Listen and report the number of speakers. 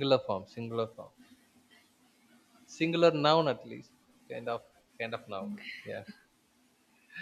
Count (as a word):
one